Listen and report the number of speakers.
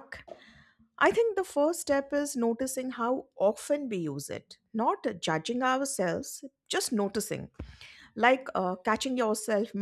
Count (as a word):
one